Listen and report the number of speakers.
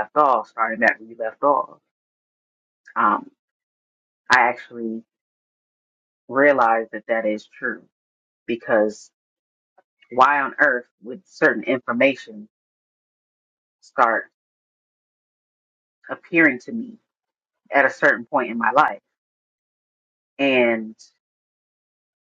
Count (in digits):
1